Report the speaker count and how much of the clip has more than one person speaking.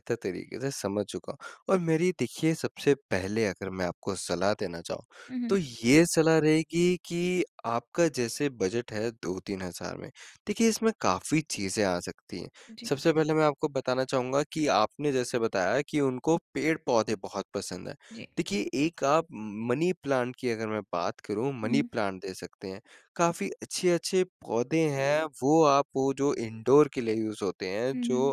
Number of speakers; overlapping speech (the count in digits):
2, about 3%